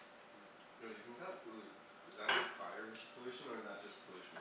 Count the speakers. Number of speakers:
1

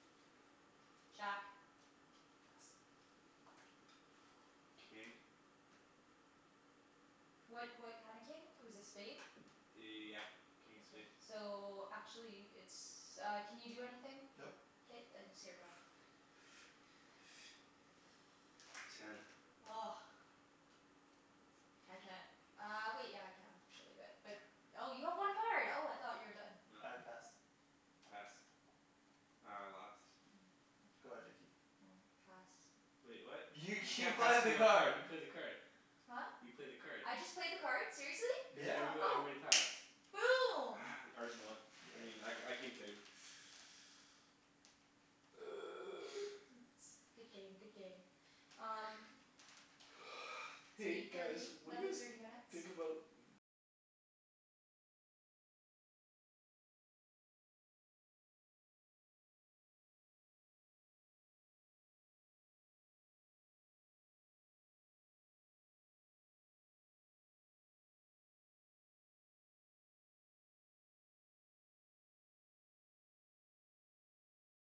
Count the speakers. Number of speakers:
3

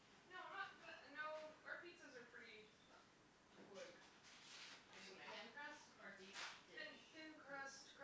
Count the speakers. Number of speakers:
2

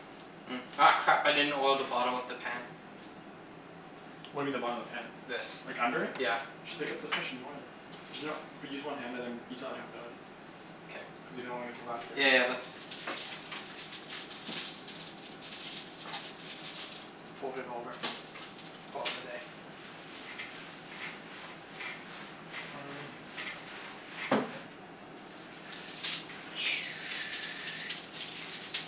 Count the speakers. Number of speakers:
2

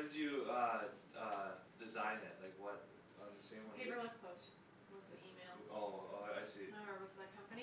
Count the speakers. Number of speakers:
2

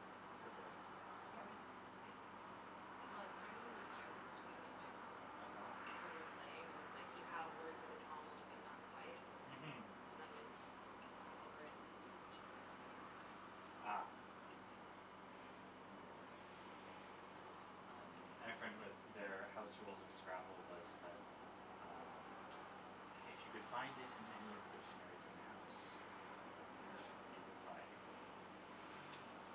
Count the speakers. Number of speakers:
2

